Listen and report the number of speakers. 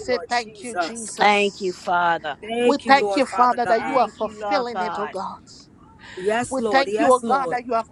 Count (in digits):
3